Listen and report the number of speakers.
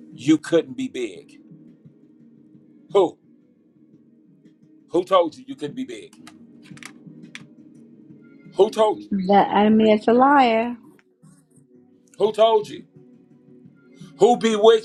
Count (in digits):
2